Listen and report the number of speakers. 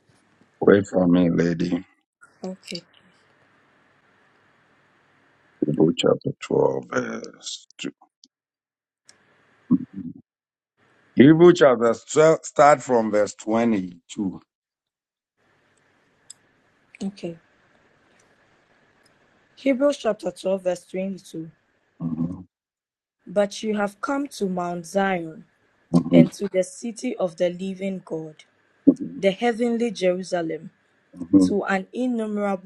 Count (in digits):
2